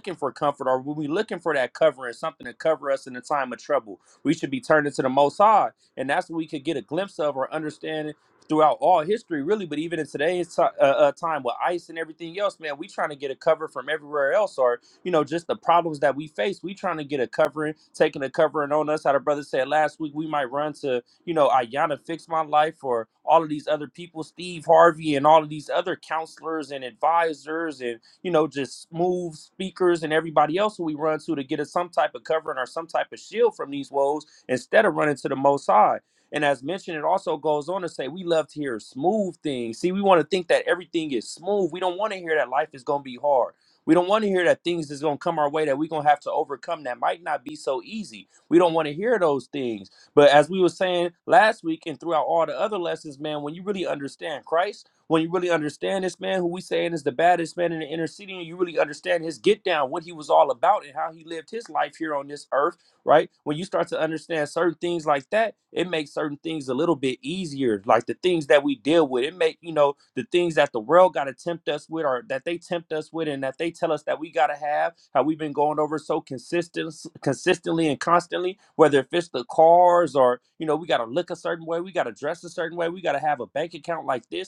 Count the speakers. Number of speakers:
one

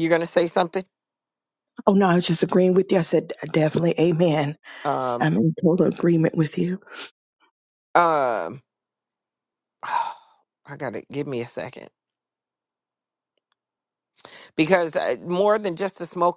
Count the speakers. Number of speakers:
two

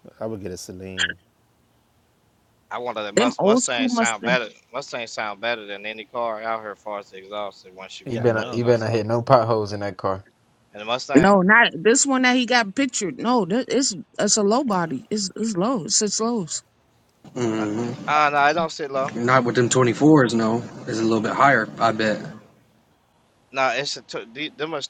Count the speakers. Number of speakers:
five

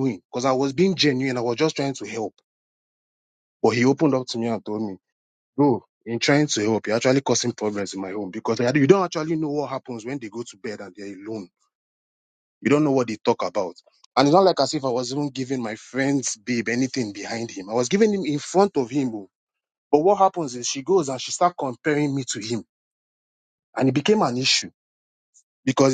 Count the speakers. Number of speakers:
one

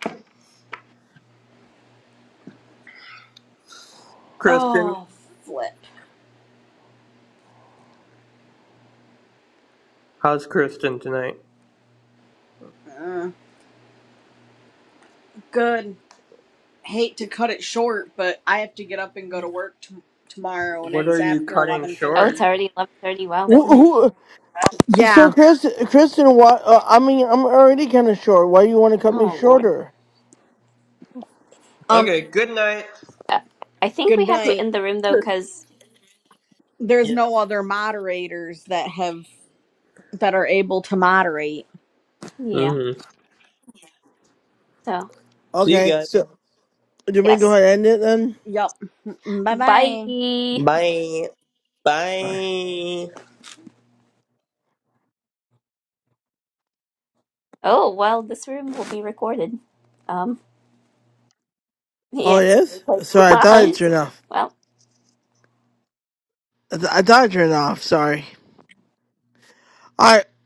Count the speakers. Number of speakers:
four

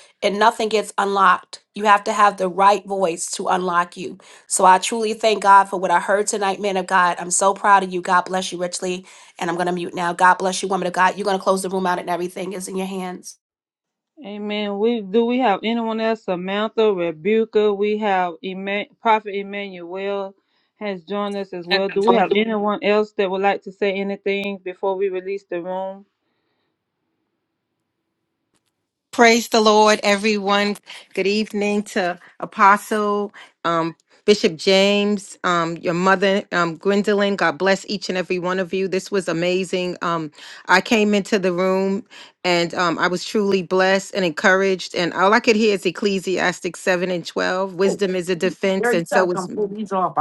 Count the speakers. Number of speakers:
four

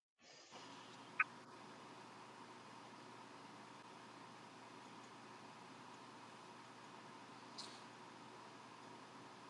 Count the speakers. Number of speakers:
zero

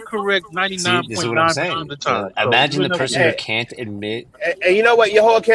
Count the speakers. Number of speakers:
three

